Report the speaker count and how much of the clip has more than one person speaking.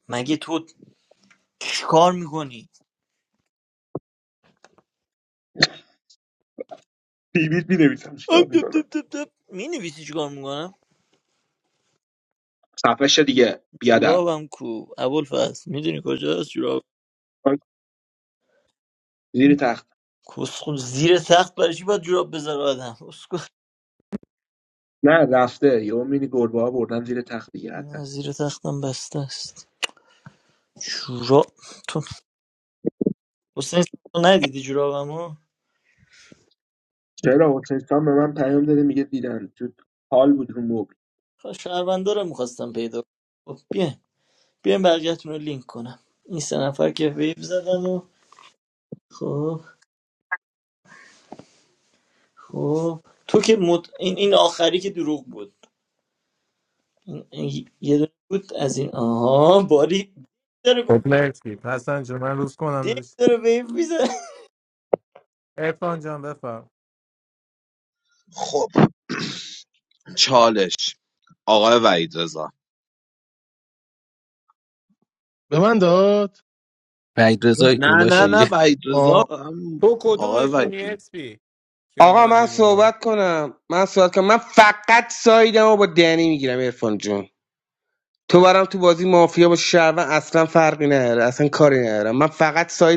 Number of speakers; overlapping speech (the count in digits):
7, about 4%